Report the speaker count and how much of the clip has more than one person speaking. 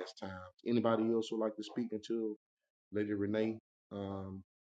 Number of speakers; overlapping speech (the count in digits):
1, no overlap